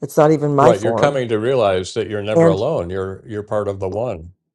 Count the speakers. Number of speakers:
2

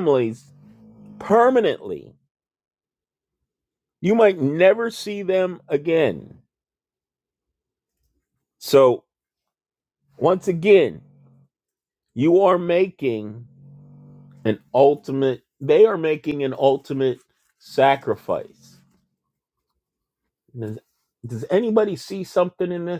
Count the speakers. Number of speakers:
1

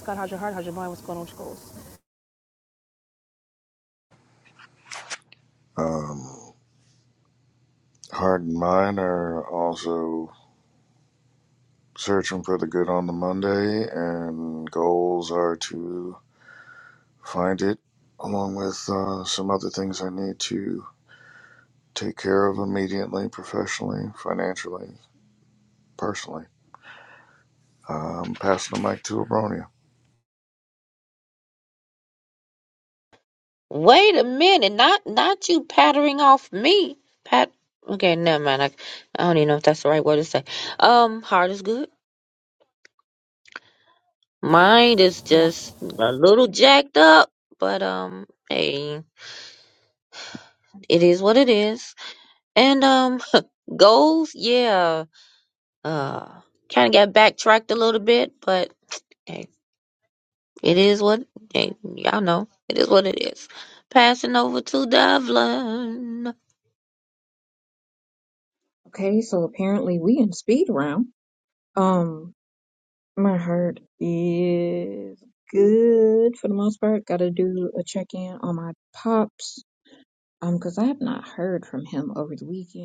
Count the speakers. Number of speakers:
4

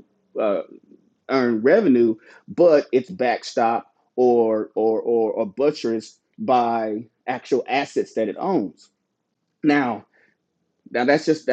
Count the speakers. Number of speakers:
1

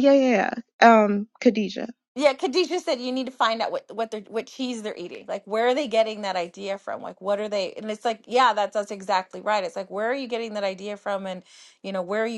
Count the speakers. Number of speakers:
2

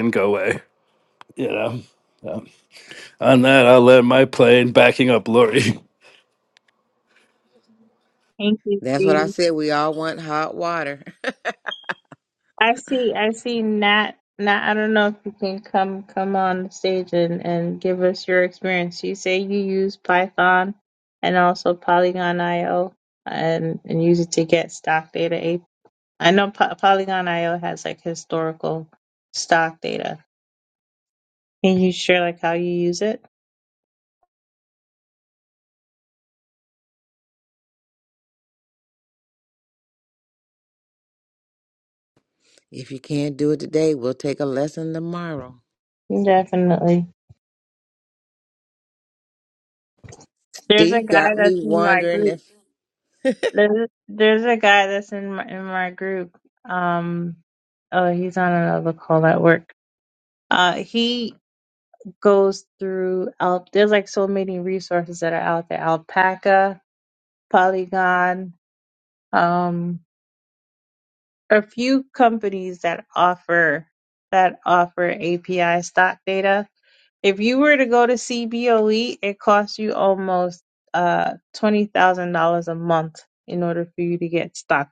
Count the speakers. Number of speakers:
3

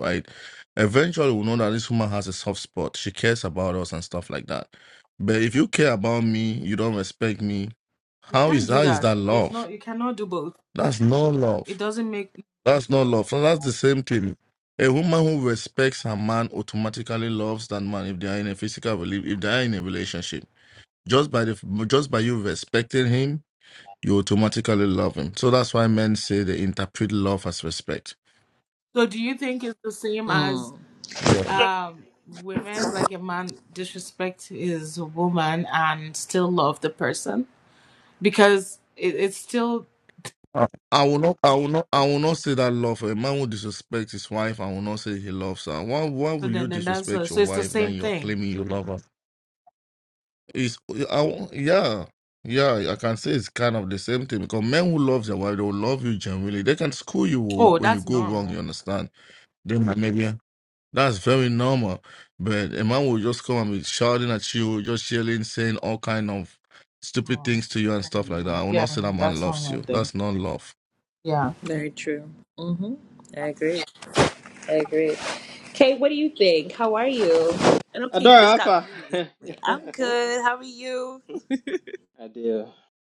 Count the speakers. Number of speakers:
4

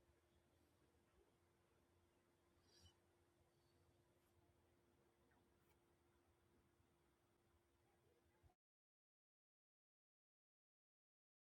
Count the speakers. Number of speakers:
0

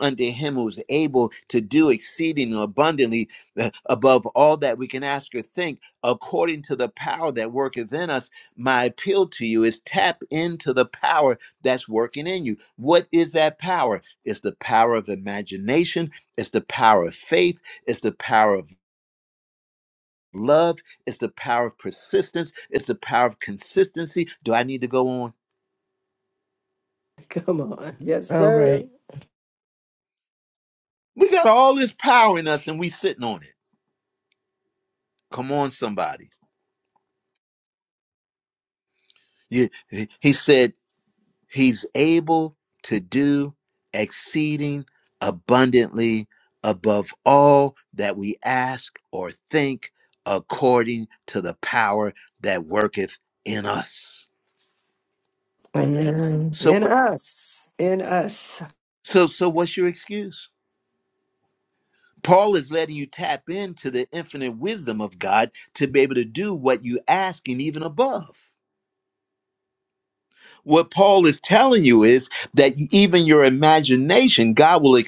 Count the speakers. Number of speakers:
3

